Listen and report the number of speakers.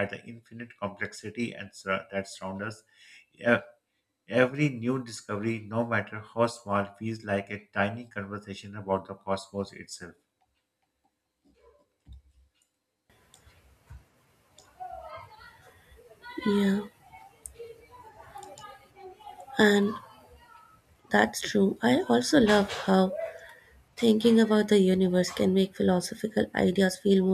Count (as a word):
two